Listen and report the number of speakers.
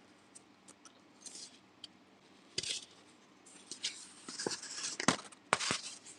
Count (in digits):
0